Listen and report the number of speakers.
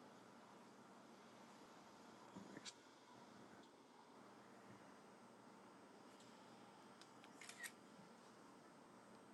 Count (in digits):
0